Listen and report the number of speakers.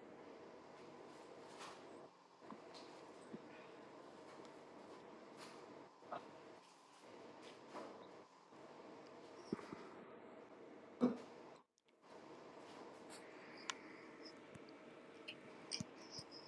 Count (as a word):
zero